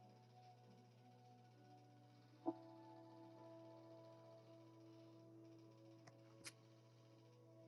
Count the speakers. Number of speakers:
0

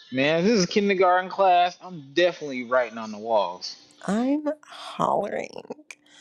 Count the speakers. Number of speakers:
2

